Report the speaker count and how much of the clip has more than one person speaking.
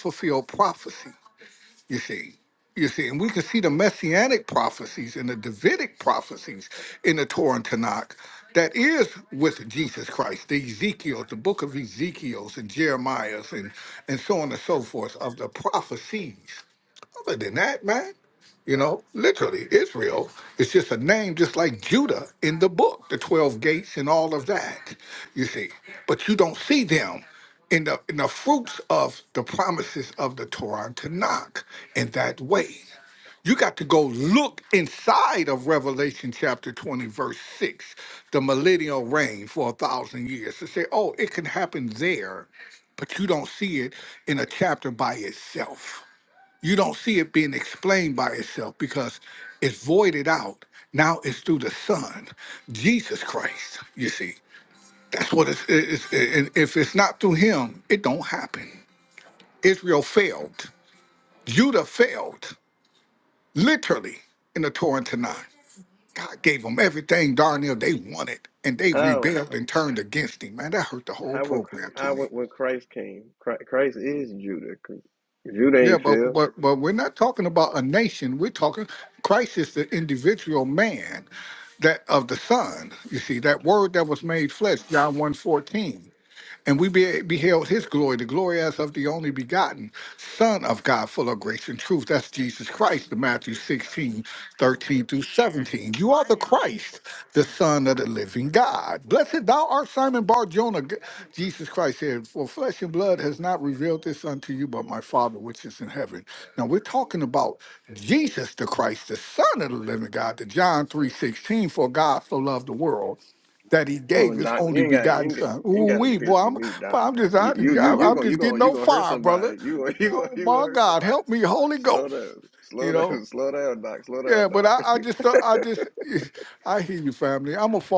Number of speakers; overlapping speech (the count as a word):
two, about 7%